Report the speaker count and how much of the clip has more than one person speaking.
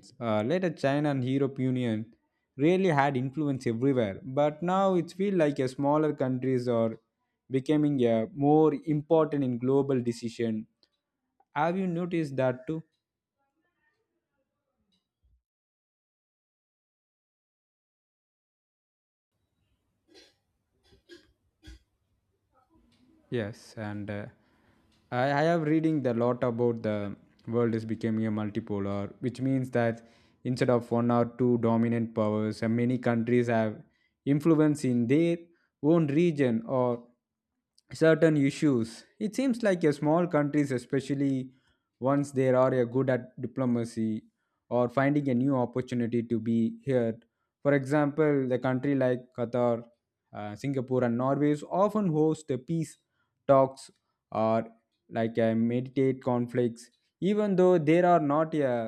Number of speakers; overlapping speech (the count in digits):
1, no overlap